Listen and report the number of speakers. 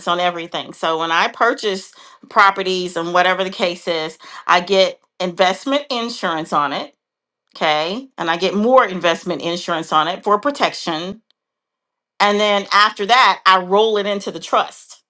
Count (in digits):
1